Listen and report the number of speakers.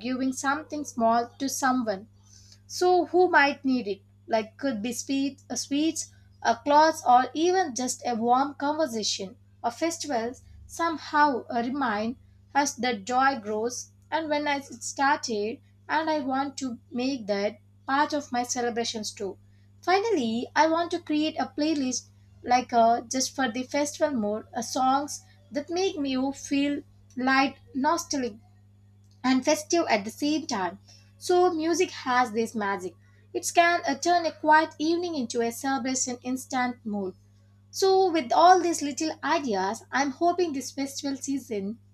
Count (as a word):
one